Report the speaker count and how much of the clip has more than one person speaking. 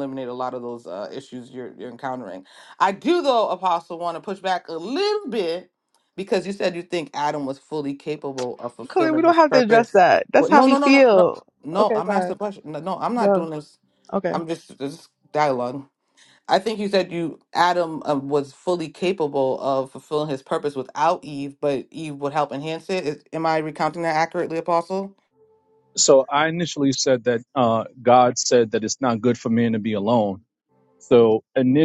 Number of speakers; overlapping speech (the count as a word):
three, about 9%